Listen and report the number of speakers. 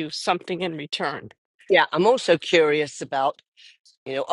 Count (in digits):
2